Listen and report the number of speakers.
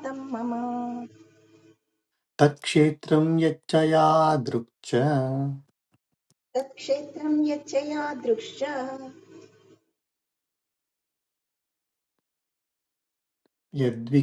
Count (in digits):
2